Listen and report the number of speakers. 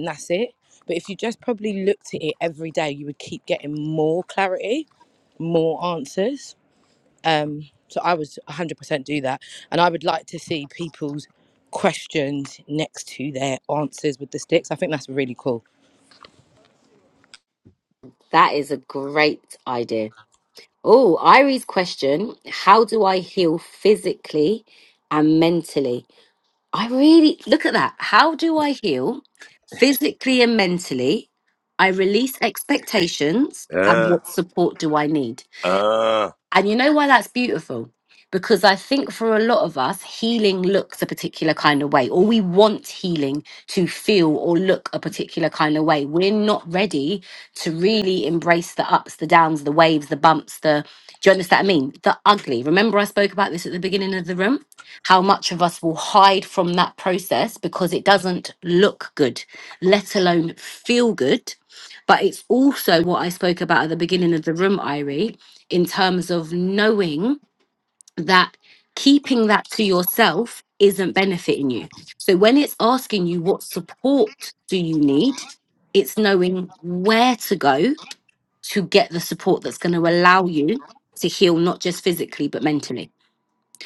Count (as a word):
three